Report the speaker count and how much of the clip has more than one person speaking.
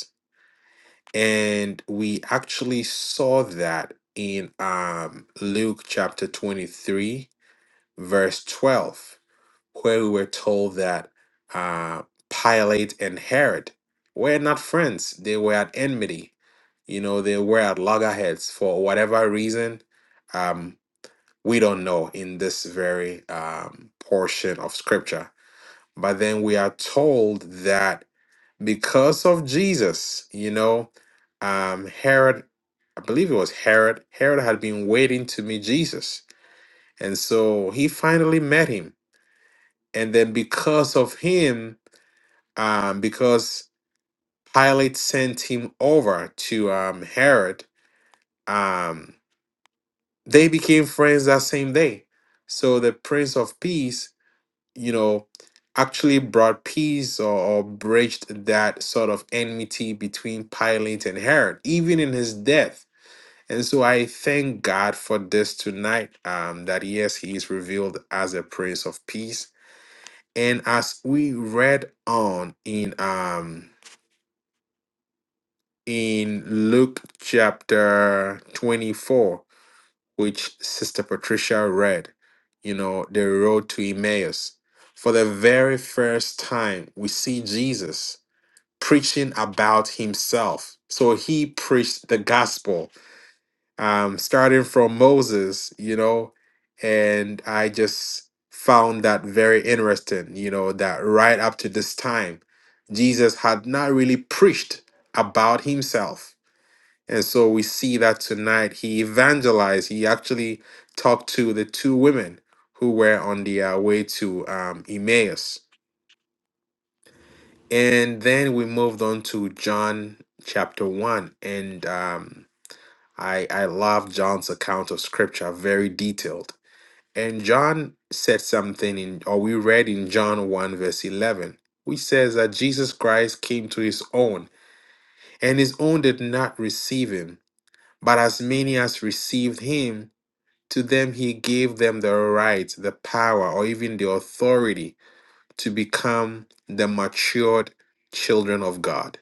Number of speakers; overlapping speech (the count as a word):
one, no overlap